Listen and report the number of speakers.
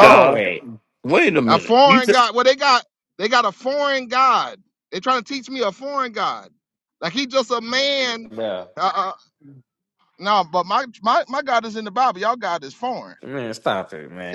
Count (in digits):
3